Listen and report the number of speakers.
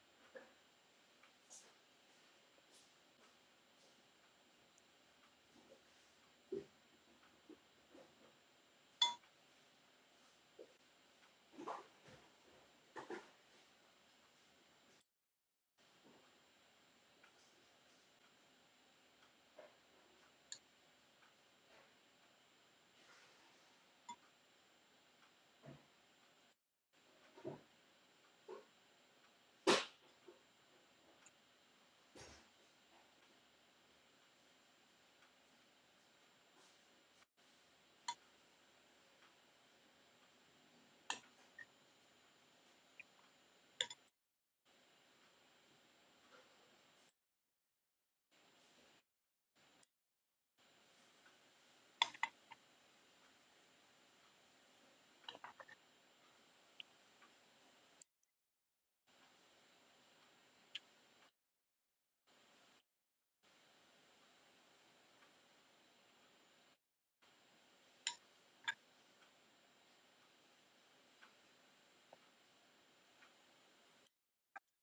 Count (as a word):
zero